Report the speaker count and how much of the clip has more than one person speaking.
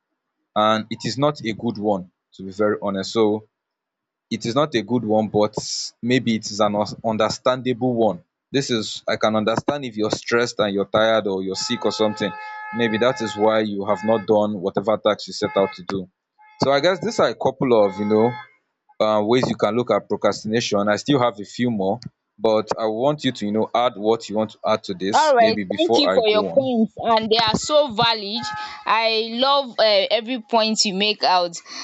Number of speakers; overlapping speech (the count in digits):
2, about 5%